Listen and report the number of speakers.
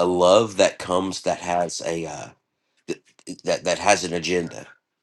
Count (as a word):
one